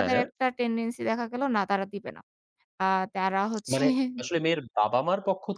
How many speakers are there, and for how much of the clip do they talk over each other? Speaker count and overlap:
2, about 9%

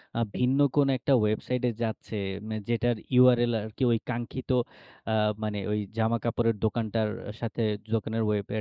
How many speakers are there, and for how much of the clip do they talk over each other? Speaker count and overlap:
1, no overlap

